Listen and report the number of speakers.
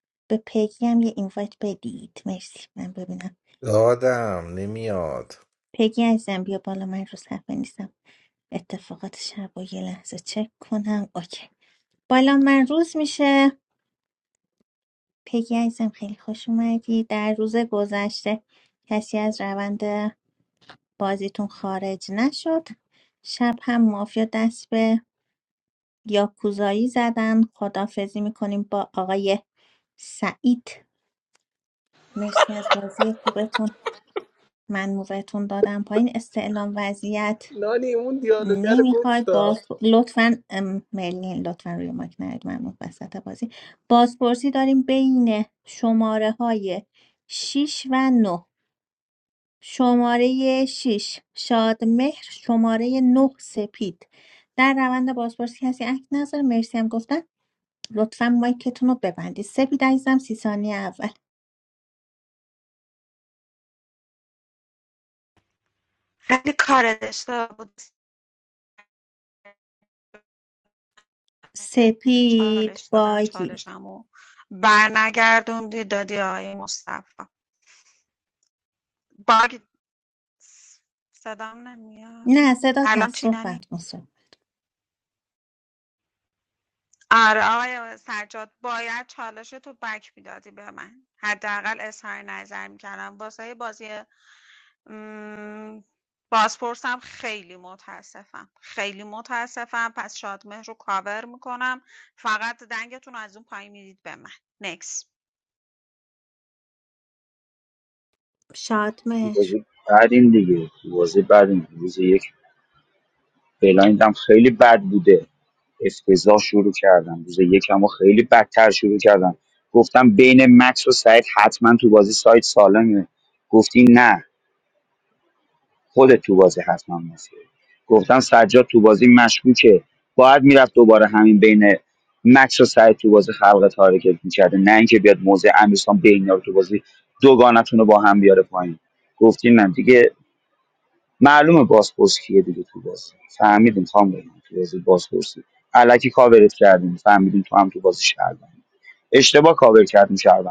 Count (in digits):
5